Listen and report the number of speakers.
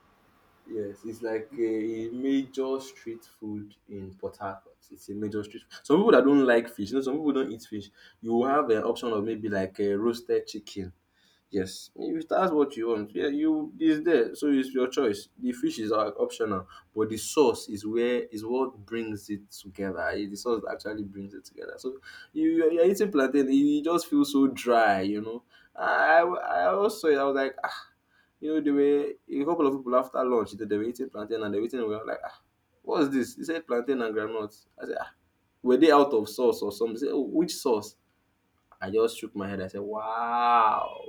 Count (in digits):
1